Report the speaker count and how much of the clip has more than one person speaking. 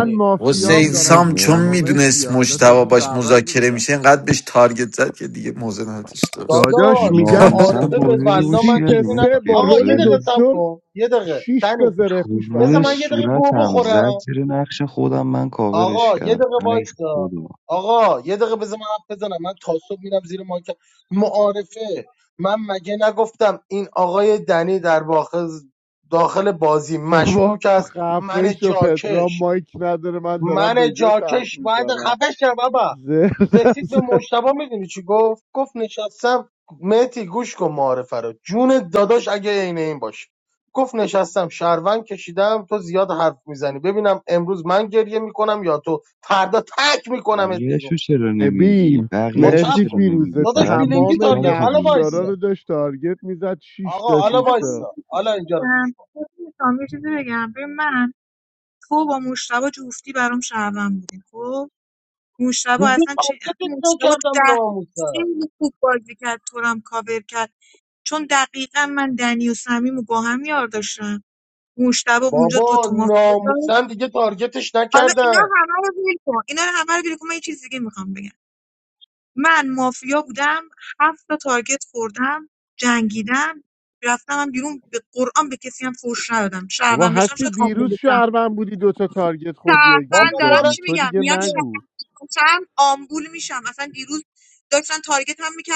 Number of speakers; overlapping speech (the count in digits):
5, about 30%